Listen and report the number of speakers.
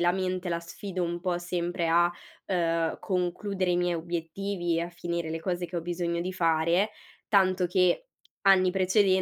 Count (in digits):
1